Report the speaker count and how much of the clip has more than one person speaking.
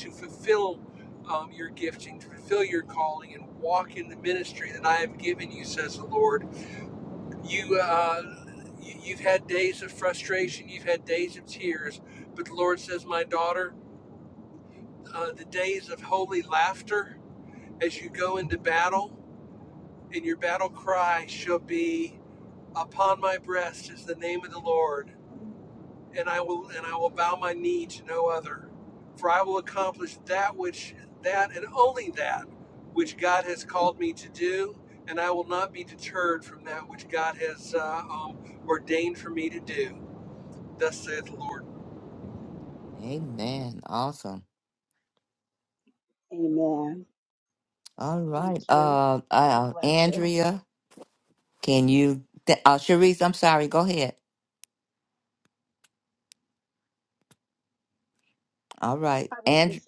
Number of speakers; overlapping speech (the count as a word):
three, about 3%